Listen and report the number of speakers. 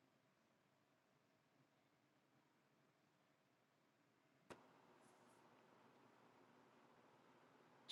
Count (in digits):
0